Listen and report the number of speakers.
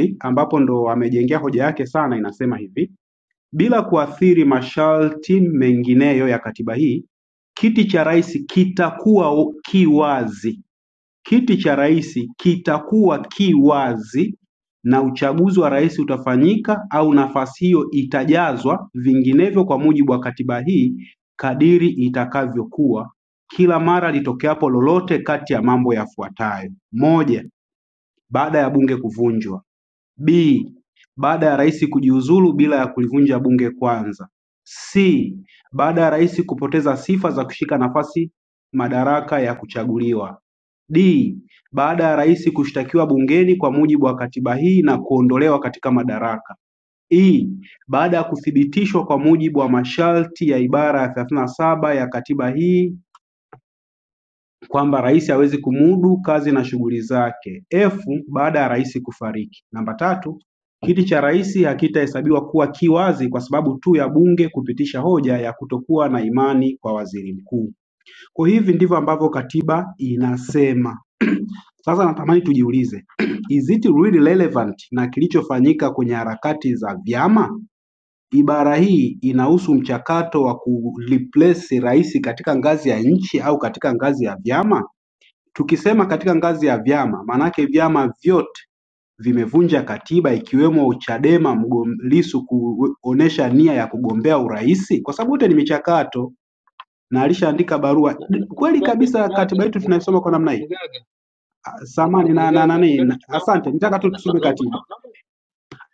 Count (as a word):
one